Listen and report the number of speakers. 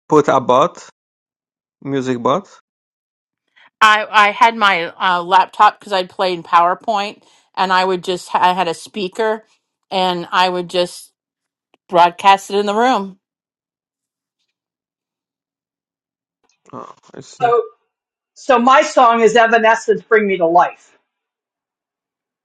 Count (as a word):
three